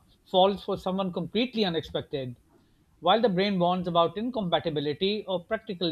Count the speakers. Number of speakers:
1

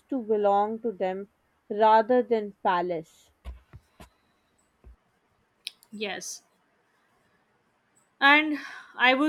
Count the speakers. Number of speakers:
2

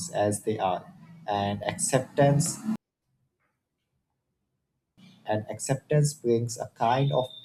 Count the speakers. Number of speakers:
1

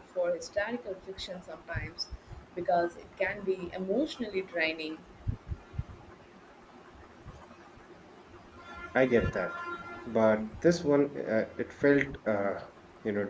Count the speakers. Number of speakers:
2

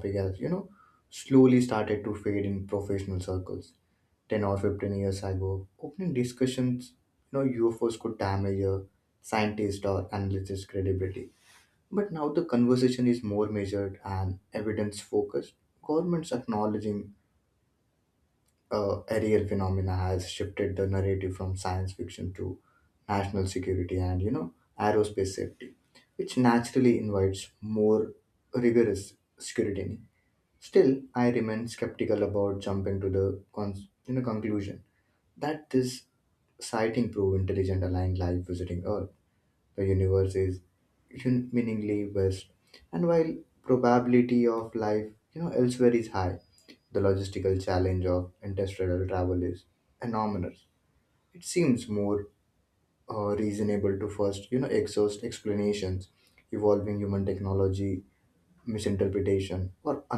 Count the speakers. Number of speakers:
1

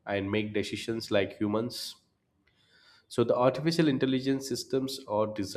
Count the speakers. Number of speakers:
1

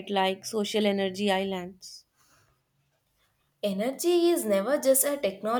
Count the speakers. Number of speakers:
2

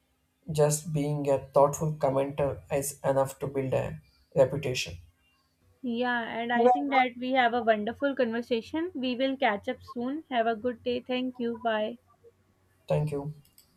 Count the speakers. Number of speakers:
2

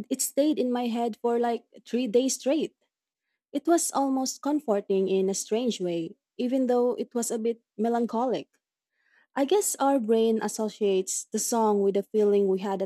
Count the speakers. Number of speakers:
1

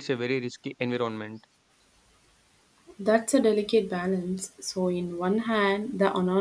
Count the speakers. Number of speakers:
2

